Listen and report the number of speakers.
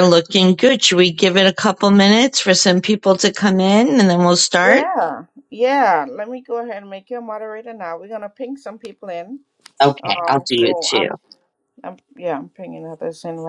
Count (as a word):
two